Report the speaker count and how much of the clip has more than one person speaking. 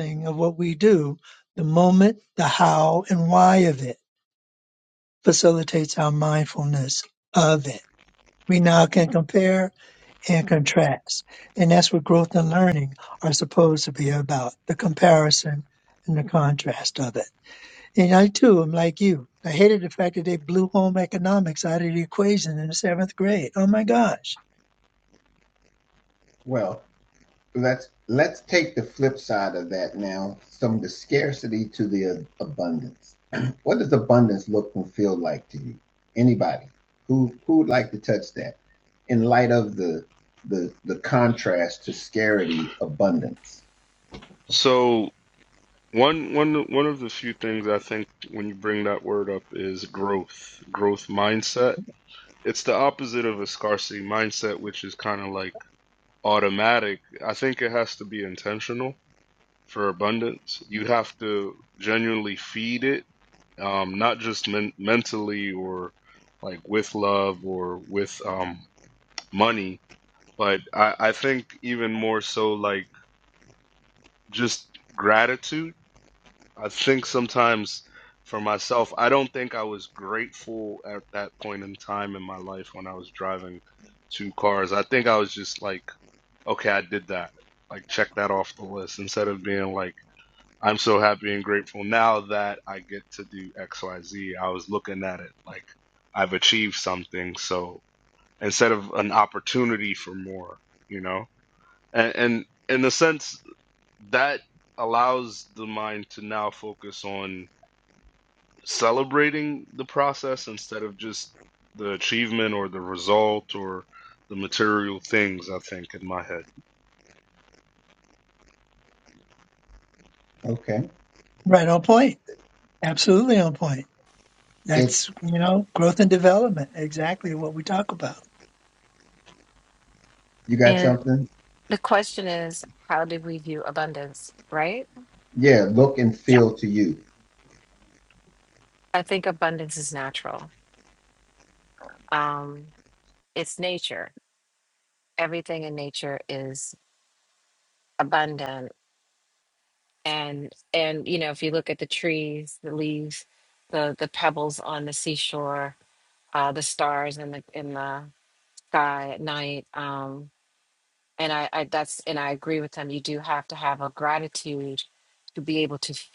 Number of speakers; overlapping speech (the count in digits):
4, under 1%